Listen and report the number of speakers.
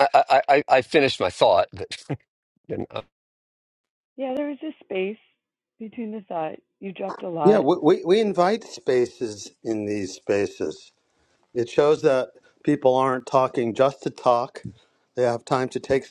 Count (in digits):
3